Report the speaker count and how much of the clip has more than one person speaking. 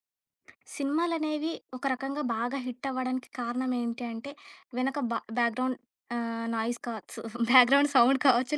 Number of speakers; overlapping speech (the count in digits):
1, no overlap